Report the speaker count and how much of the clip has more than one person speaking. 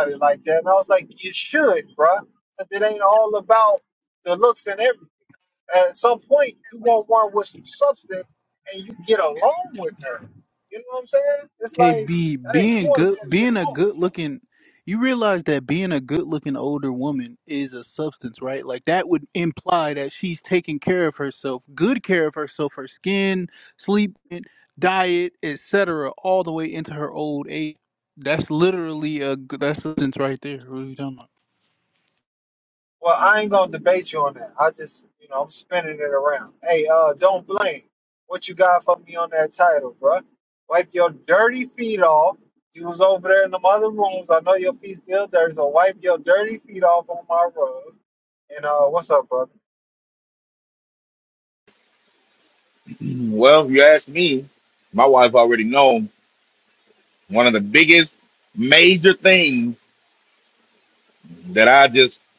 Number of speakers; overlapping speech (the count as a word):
three, about 3%